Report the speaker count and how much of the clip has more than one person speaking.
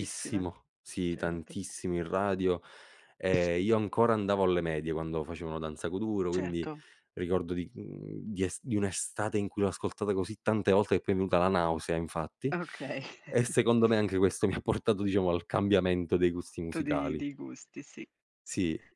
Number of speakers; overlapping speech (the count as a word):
two, about 9%